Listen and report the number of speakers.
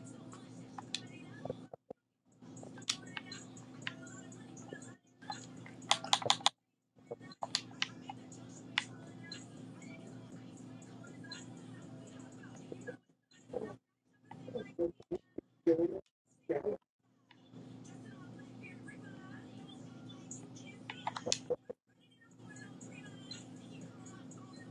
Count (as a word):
zero